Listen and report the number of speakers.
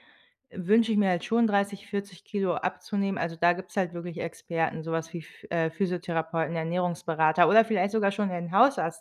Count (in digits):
1